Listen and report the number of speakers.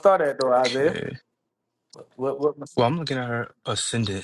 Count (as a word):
two